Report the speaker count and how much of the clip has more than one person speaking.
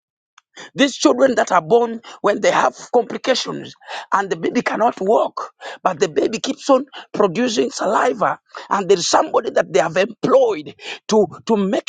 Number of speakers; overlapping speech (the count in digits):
1, no overlap